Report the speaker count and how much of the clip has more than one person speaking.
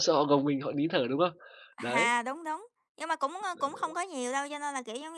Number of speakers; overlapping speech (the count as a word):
two, about 13%